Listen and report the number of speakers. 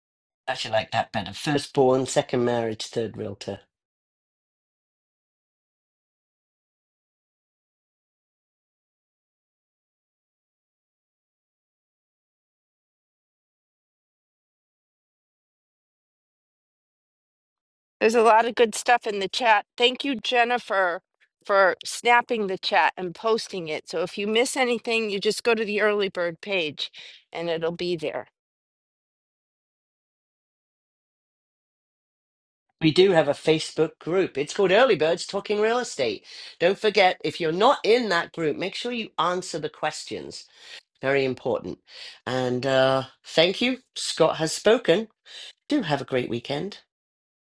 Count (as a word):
two